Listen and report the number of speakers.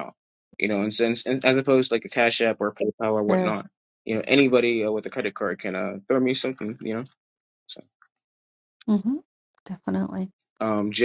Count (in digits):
2